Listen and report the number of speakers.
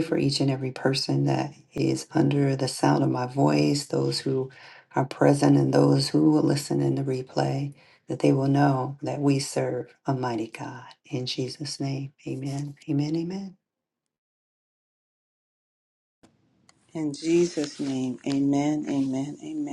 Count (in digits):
2